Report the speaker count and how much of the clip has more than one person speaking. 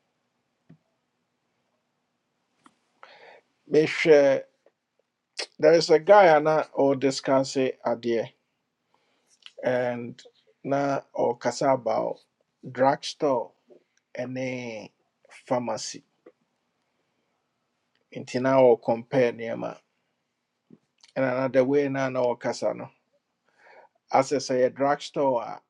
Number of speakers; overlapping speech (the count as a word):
one, no overlap